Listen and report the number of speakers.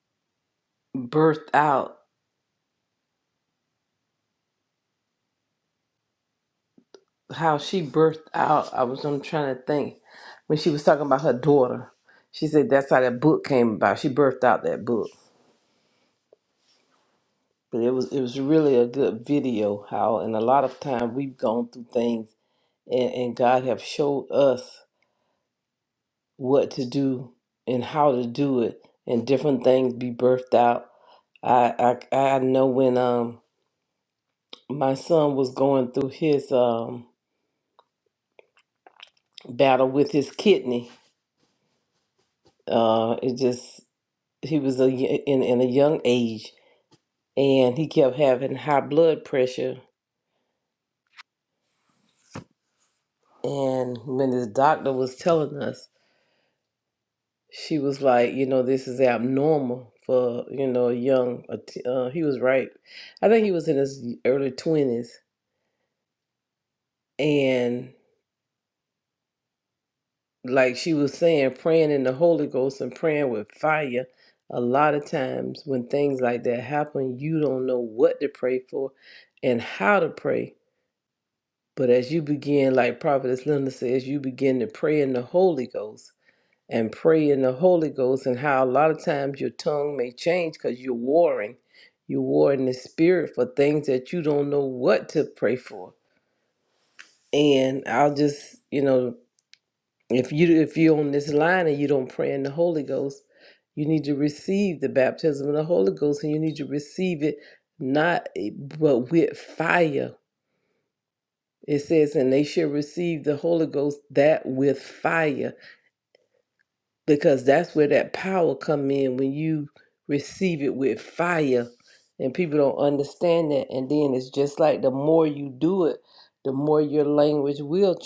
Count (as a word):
one